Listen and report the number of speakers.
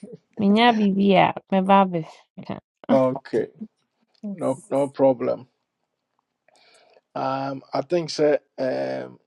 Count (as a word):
two